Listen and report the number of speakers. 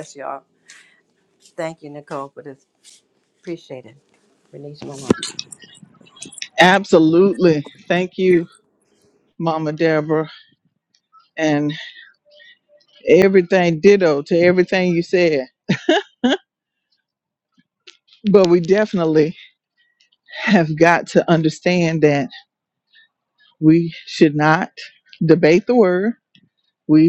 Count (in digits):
2